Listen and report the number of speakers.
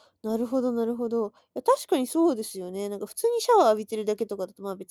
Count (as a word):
one